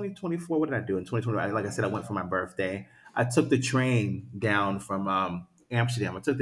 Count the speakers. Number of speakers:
1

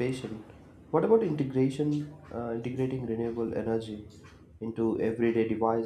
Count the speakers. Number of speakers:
1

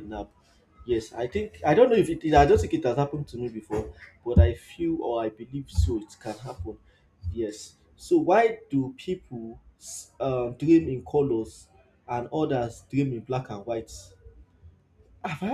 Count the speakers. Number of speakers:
1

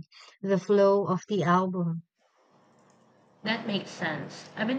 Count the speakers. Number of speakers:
2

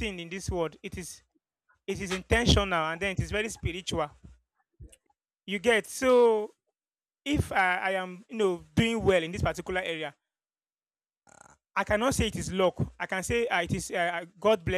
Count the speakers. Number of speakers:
1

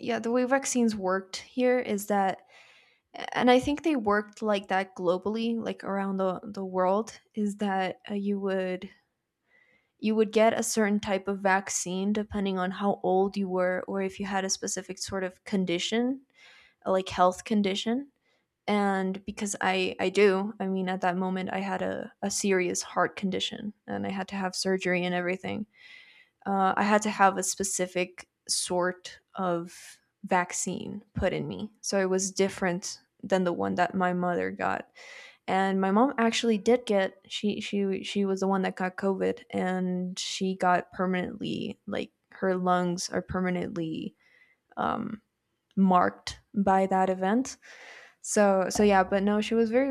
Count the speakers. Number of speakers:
1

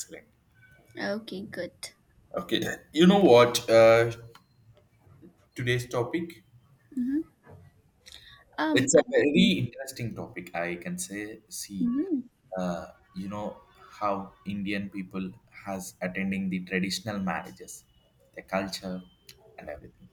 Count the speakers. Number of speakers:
2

